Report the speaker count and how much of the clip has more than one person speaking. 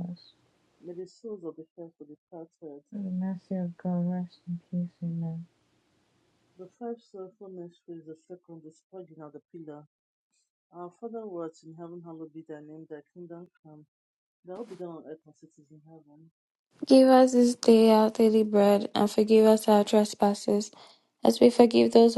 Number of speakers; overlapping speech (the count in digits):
3, no overlap